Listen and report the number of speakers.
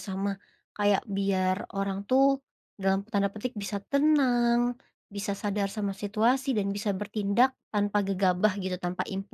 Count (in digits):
1